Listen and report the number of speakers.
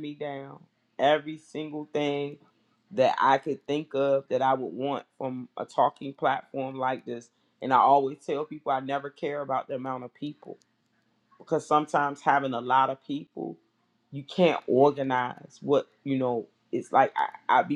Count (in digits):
1